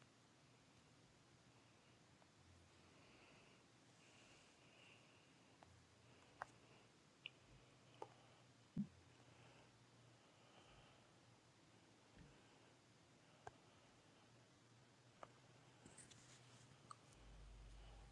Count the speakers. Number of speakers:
0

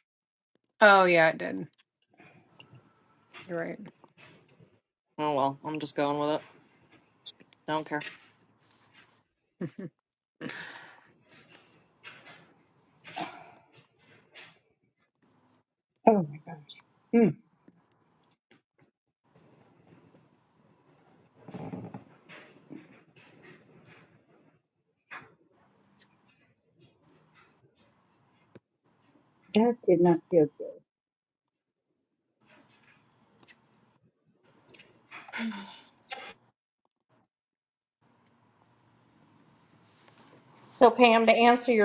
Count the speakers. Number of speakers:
4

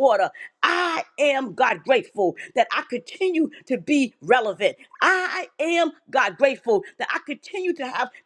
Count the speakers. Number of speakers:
1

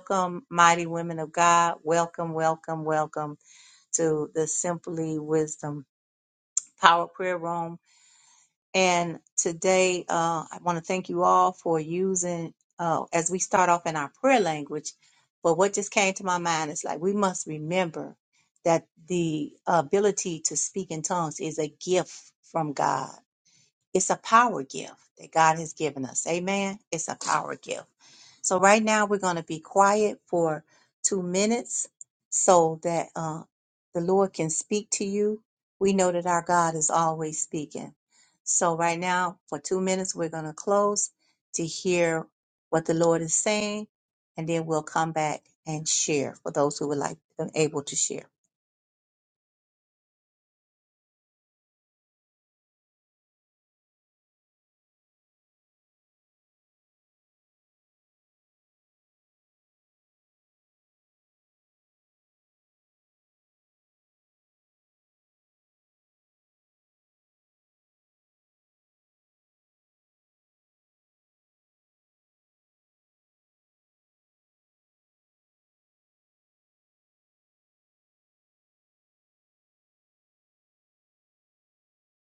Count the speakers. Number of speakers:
1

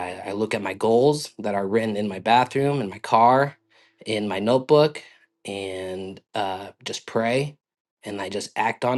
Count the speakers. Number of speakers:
1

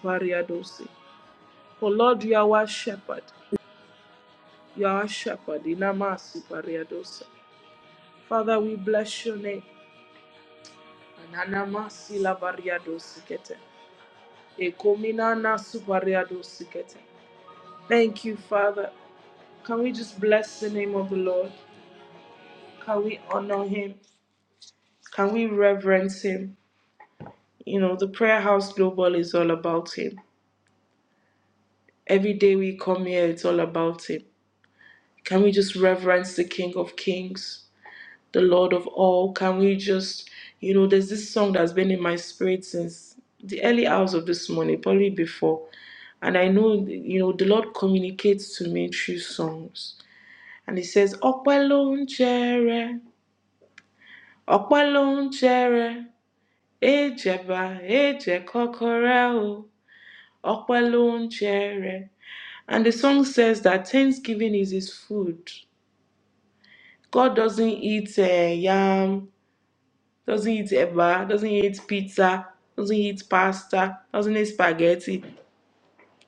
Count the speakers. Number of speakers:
1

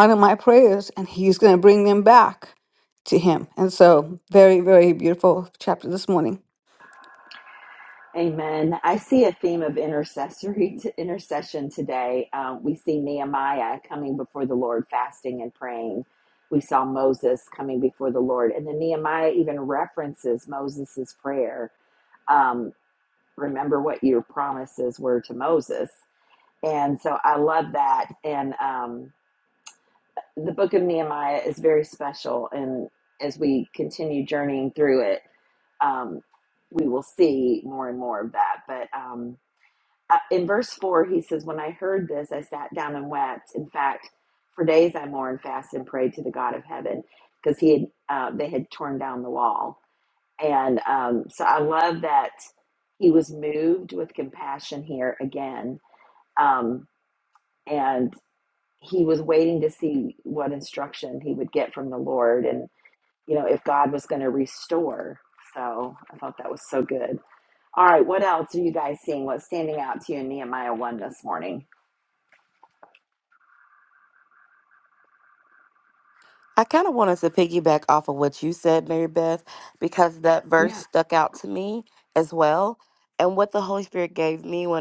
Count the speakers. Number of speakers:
3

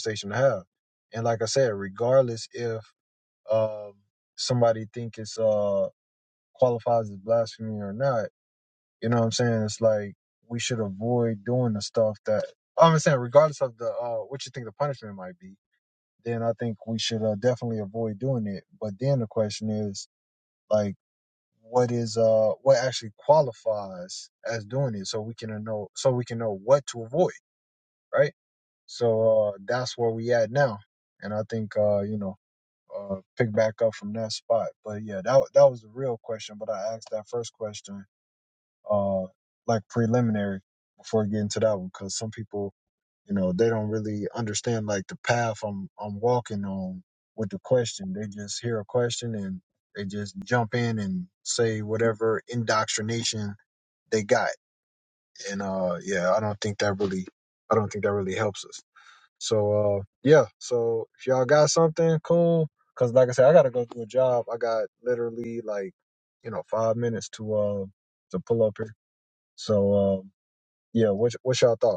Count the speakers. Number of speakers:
1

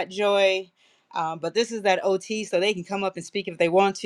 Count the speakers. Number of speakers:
1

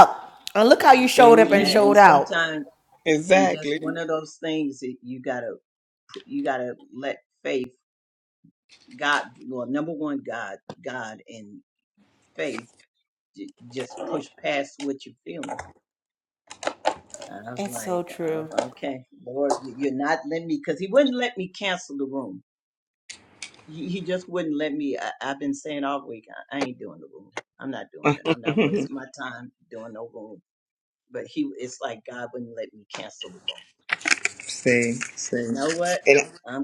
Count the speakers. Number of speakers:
3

